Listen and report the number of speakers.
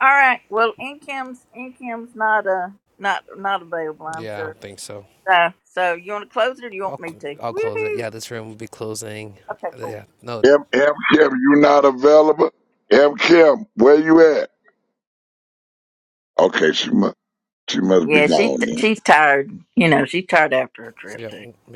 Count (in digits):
3